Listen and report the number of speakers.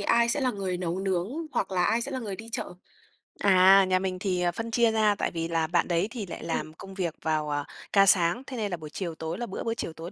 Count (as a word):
two